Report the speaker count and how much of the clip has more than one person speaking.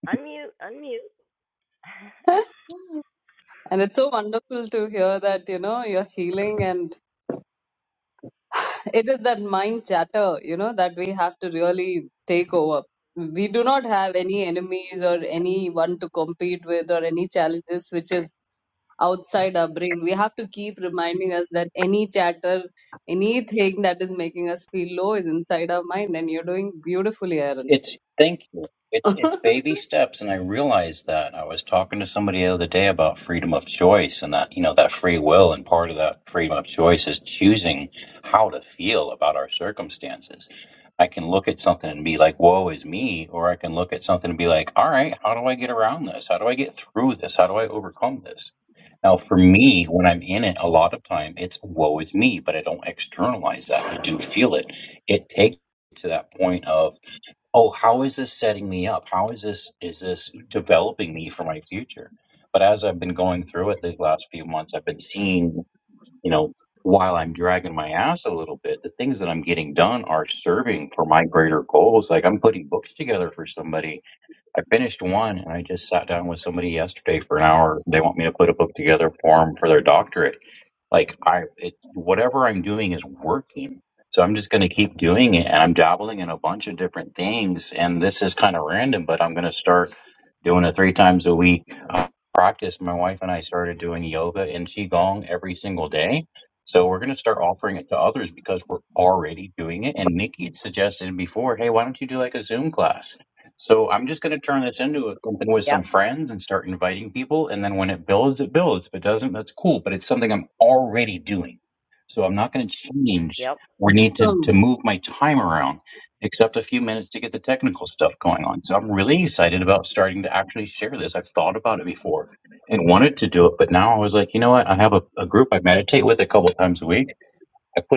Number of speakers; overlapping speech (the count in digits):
3, about 1%